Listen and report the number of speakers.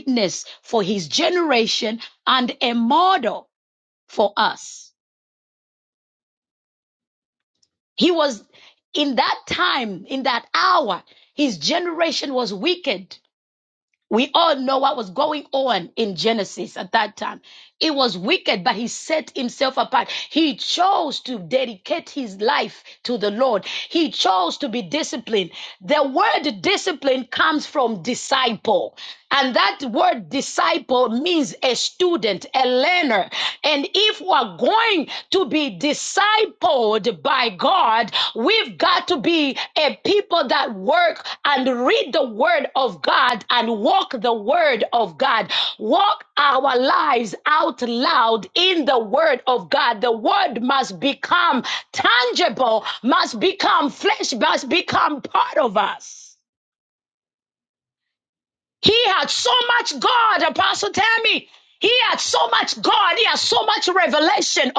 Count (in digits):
1